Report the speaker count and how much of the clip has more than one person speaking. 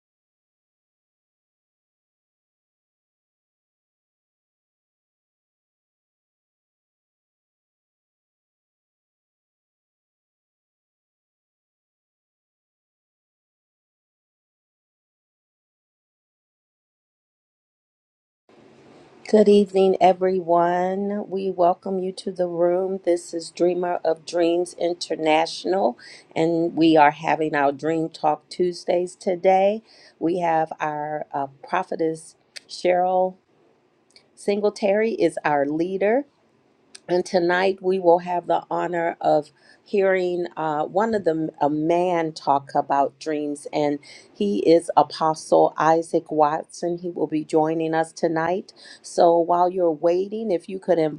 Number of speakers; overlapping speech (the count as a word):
one, no overlap